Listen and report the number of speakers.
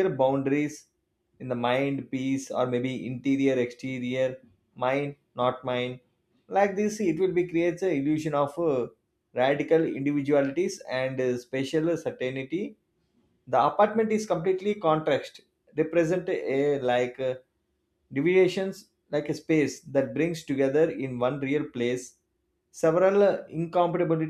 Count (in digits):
1